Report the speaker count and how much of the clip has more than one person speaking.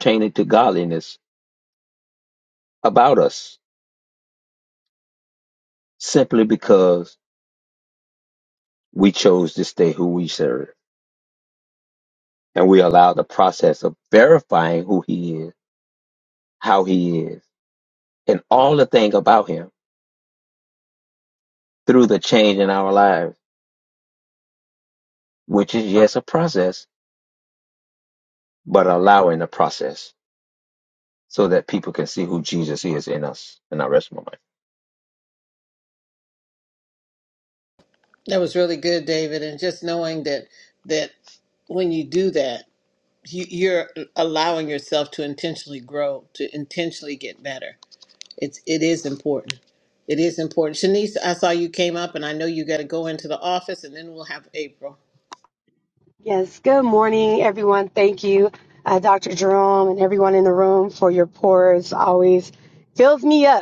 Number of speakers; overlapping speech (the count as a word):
three, no overlap